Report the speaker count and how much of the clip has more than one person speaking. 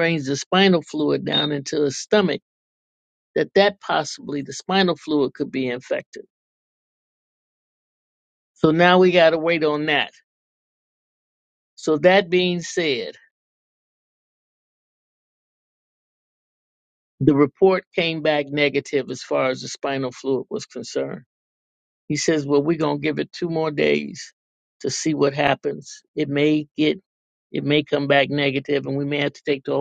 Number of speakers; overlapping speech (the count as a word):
one, no overlap